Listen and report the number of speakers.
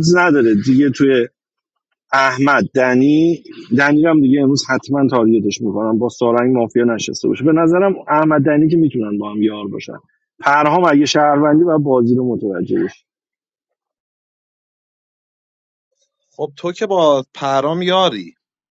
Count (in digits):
2